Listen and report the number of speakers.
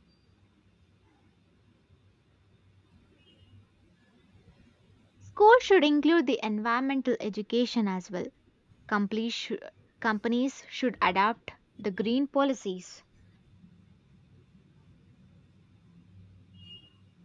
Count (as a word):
one